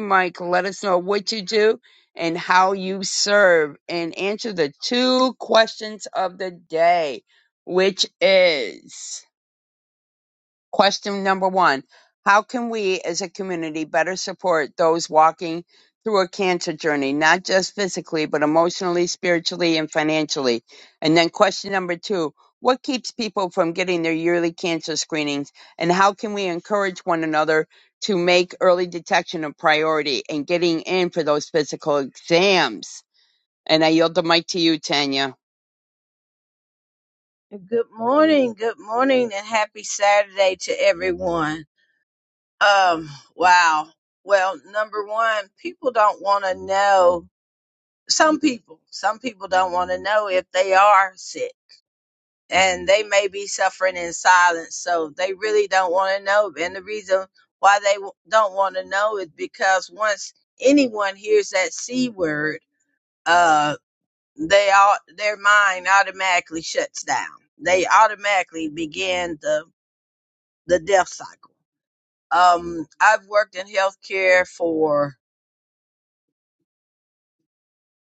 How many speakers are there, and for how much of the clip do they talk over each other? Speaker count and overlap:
2, no overlap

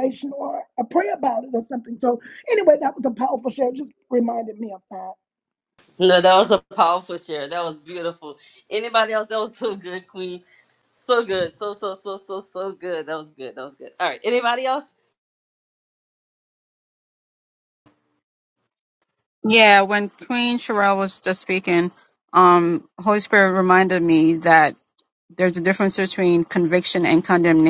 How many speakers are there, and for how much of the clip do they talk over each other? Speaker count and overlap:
3, no overlap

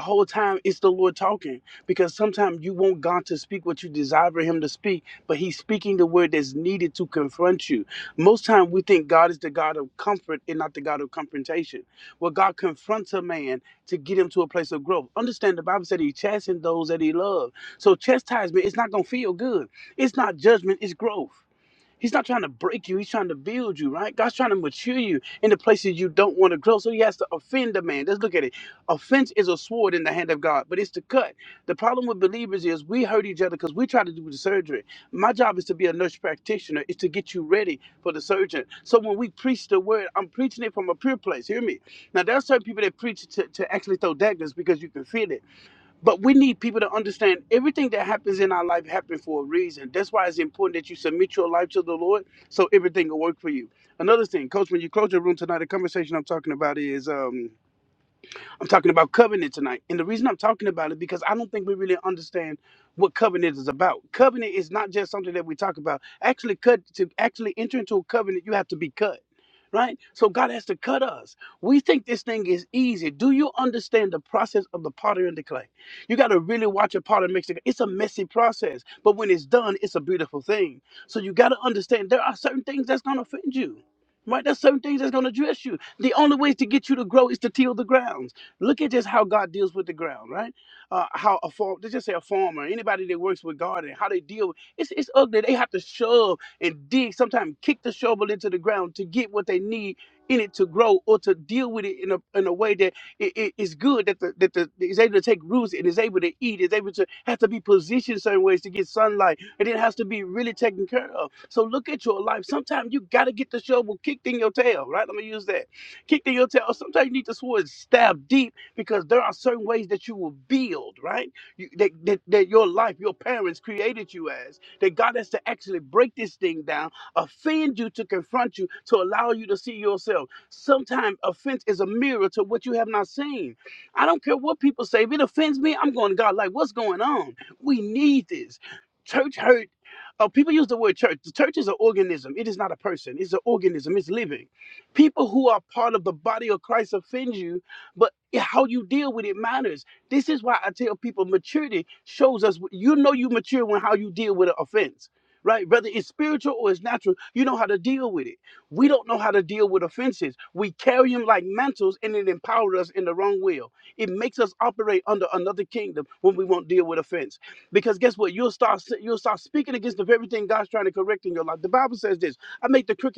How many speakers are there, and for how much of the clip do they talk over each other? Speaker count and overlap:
1, no overlap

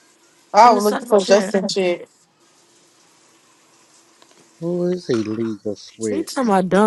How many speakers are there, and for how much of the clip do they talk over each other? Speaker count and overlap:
3, about 16%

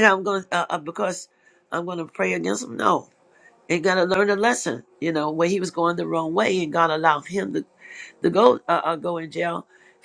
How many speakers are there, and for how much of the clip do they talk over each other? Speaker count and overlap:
1, no overlap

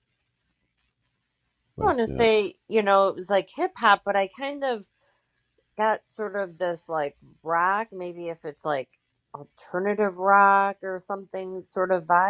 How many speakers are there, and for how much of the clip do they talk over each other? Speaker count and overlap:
1, no overlap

